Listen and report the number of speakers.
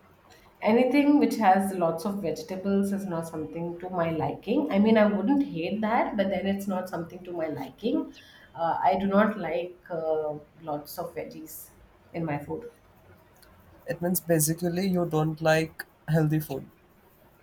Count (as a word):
two